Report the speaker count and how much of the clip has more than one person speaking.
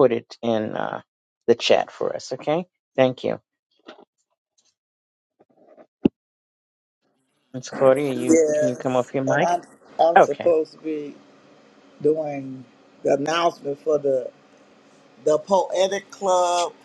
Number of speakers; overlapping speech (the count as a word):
two, about 8%